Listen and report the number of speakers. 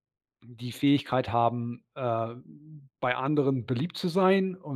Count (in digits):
1